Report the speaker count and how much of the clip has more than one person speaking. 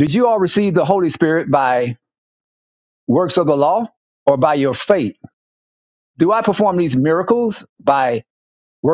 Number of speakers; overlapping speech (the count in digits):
1, no overlap